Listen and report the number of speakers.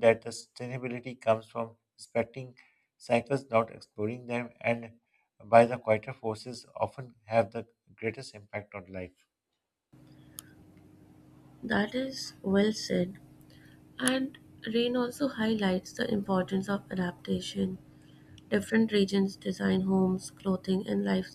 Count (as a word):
two